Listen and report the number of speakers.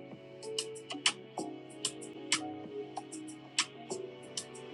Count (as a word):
zero